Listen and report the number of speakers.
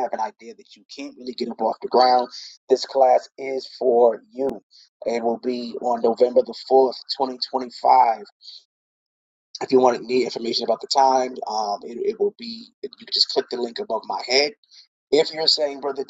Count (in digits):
1